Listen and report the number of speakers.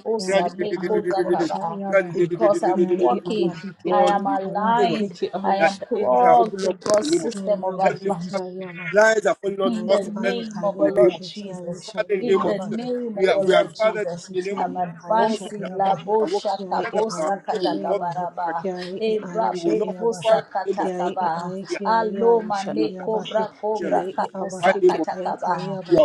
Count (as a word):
three